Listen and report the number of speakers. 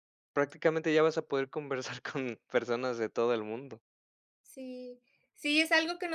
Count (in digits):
2